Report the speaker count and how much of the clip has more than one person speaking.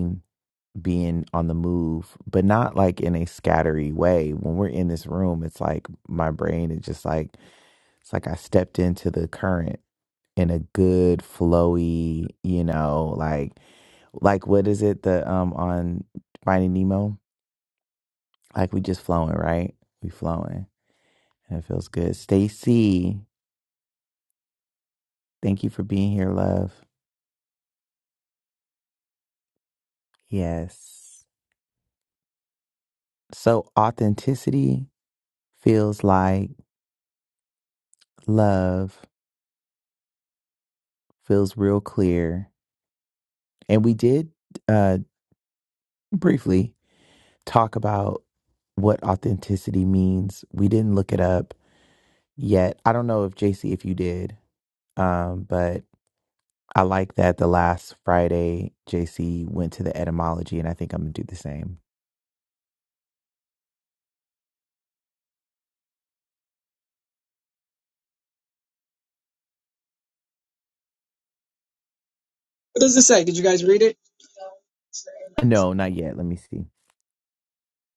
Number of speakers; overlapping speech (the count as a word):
two, no overlap